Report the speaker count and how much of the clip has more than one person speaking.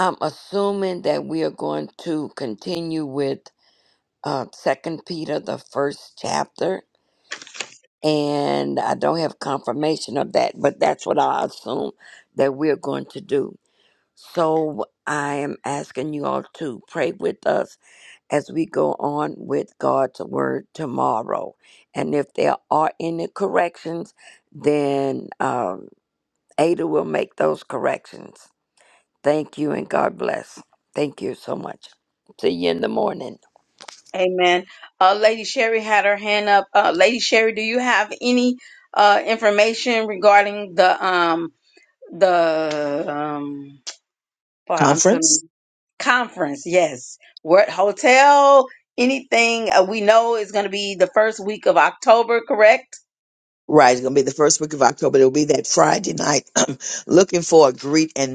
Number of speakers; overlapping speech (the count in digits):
3, about 1%